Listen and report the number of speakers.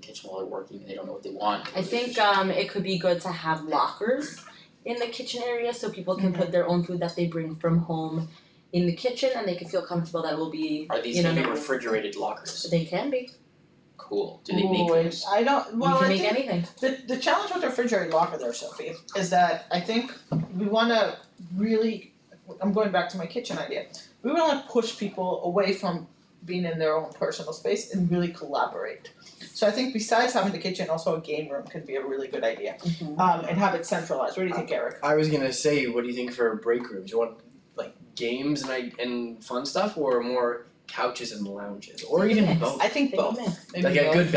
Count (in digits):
4